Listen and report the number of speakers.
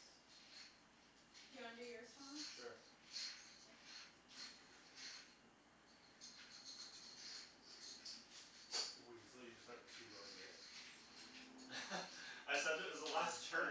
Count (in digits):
3